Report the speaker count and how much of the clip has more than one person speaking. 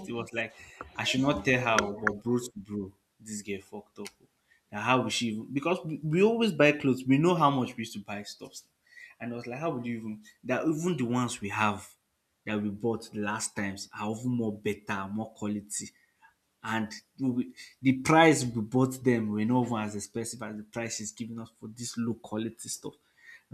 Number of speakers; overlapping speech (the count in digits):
1, no overlap